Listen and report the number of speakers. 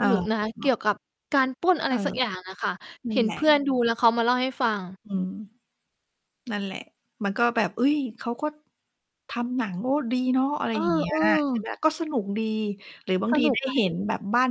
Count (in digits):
2